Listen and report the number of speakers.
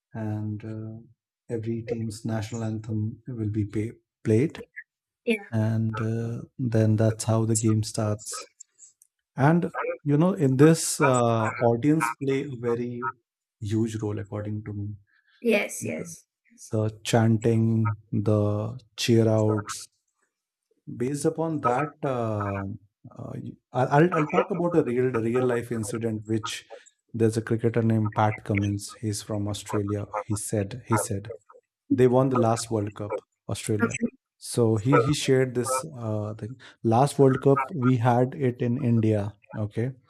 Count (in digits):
2